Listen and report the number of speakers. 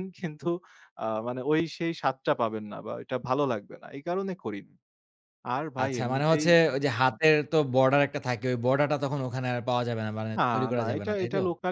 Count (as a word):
two